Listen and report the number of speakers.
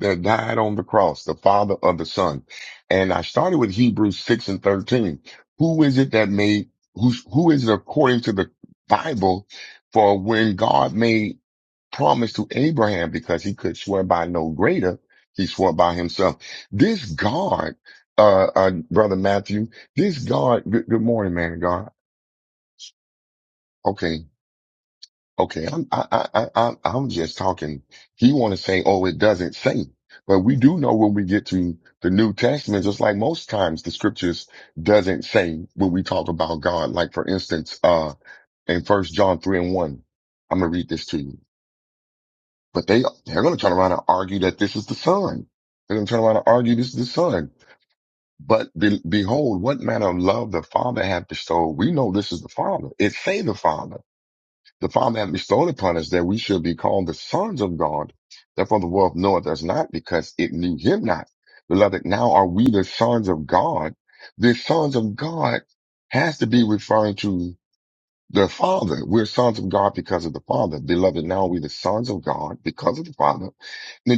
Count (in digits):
1